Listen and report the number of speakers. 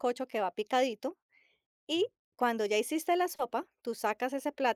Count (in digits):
1